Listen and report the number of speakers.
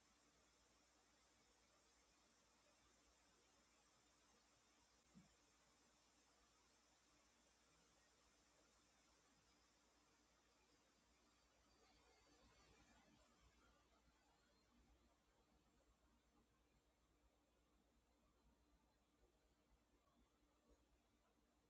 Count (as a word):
zero